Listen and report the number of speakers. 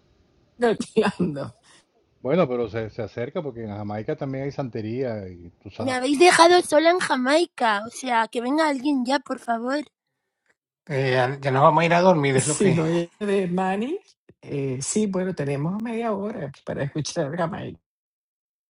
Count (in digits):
4